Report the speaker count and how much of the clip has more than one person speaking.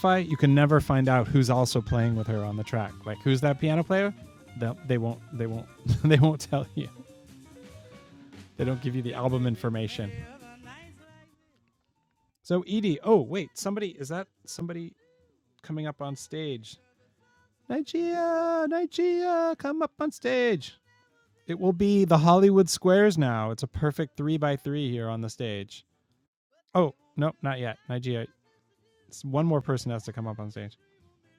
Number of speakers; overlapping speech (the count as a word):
one, no overlap